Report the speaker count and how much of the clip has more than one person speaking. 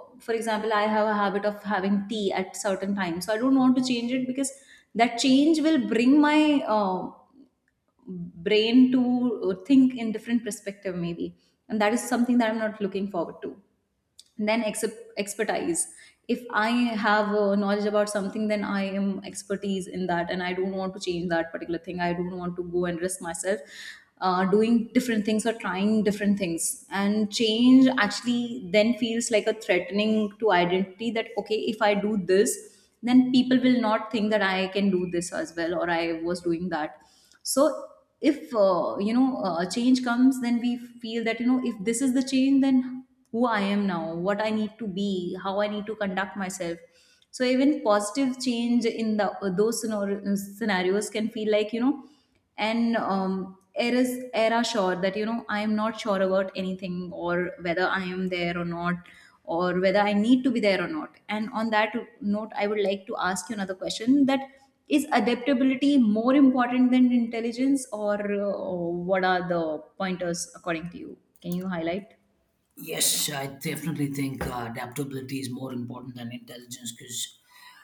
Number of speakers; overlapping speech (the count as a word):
two, no overlap